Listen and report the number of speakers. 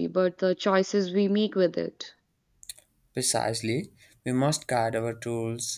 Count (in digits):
2